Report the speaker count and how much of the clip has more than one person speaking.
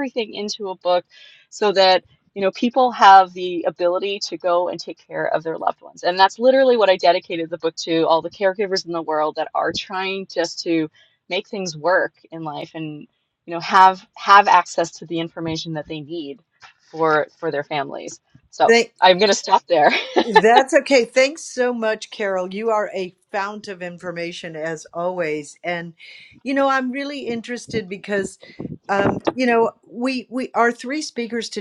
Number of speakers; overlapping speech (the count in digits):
2, about 1%